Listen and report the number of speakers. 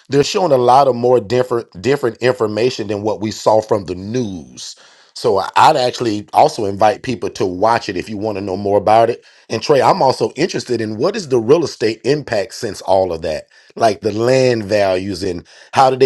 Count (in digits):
1